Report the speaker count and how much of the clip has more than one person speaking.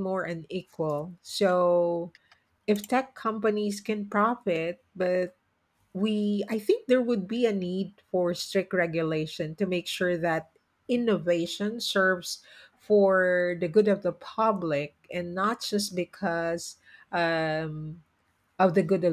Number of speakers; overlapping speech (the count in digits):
1, no overlap